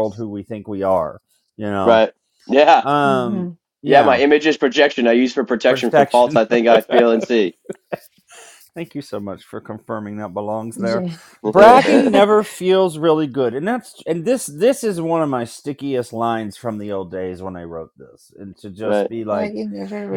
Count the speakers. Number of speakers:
3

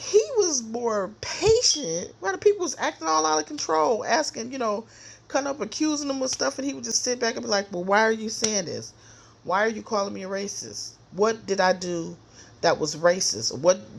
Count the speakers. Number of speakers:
1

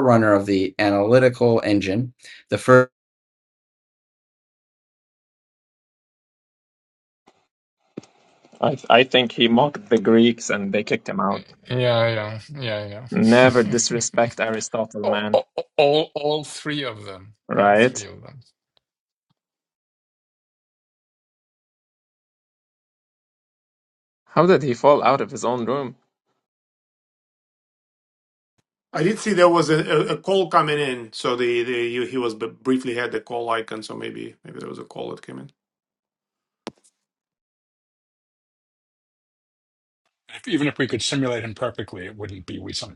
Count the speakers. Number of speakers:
5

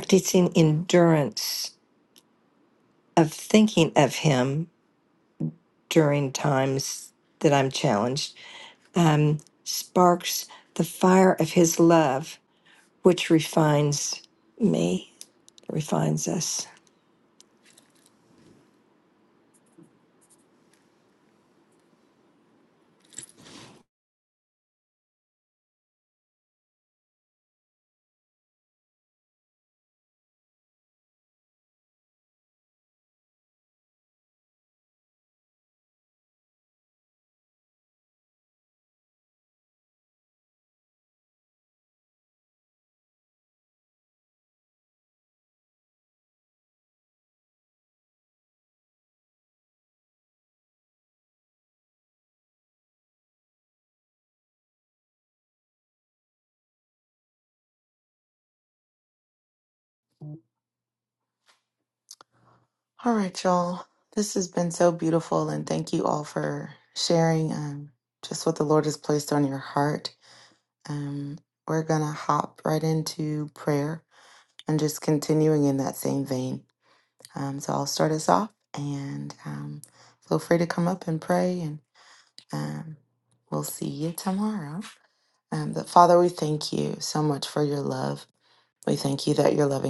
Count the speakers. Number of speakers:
2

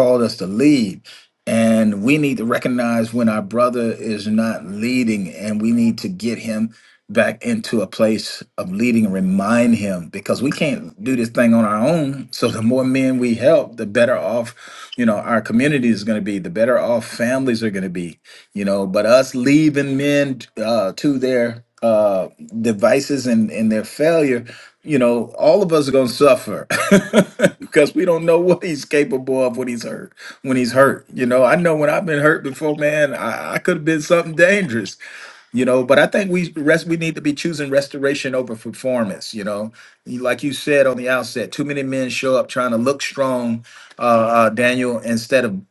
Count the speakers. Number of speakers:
1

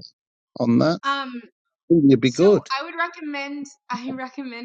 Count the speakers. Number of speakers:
2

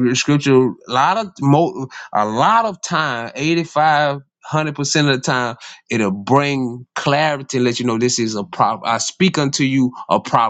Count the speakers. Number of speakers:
1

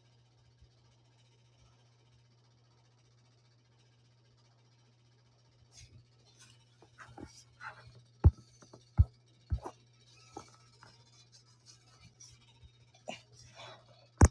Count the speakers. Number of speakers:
0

